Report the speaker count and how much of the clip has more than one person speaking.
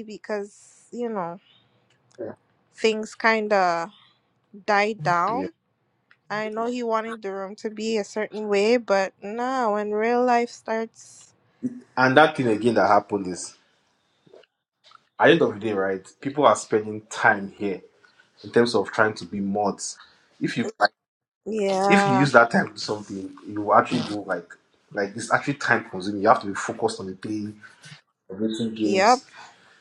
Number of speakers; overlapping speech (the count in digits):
2, about 3%